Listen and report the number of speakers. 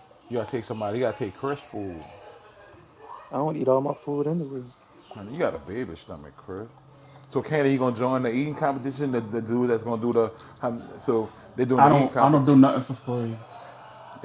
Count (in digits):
3